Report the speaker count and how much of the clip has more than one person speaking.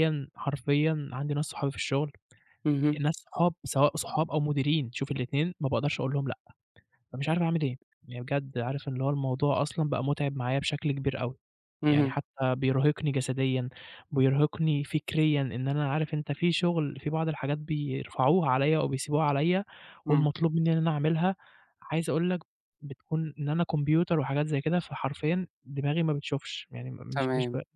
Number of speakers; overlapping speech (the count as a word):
two, about 3%